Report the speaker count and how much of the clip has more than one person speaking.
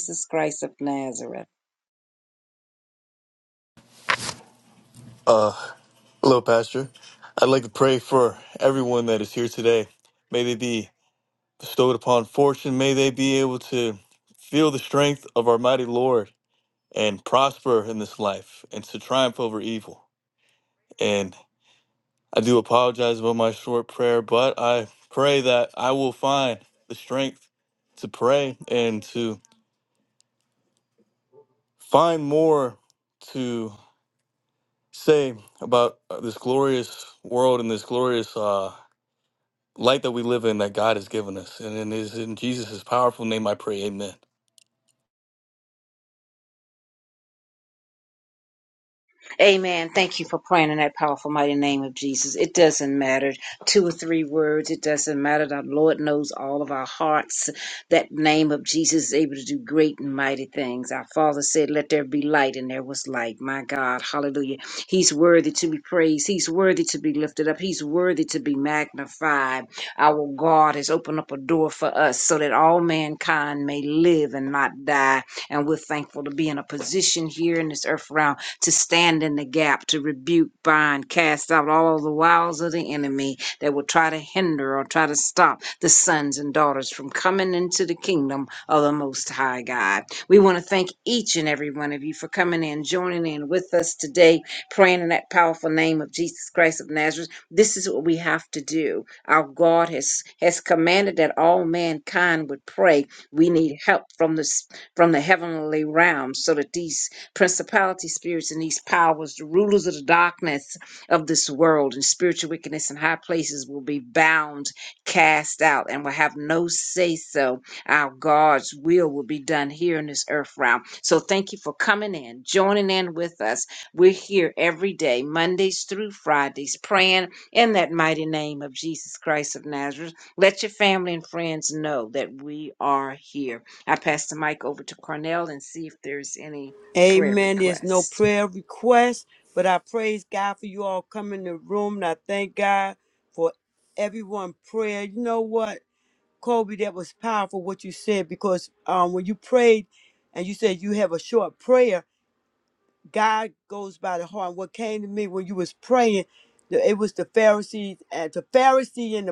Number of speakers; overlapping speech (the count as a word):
three, under 1%